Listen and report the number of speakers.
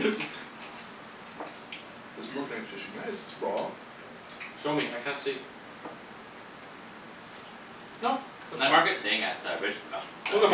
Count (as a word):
three